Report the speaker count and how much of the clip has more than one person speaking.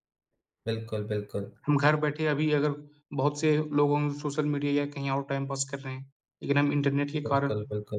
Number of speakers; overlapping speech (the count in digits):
2, about 5%